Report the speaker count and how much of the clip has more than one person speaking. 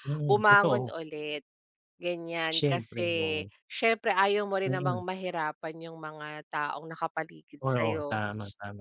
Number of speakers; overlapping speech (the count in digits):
2, about 28%